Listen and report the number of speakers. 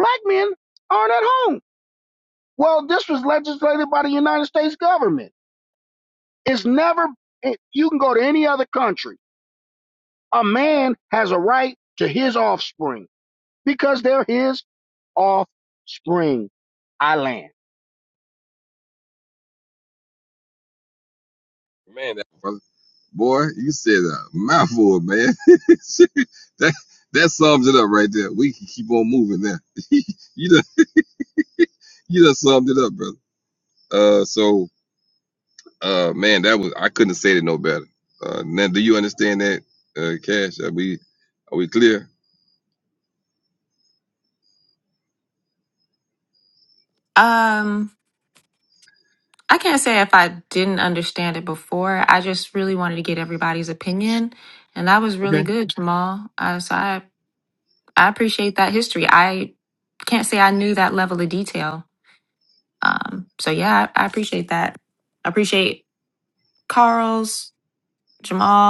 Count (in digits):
3